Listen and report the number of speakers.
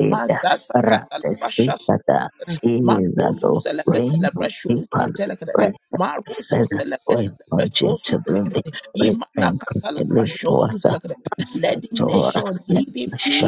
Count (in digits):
2